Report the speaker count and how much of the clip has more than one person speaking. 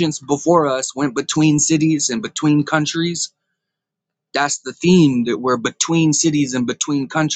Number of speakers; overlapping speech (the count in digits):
1, no overlap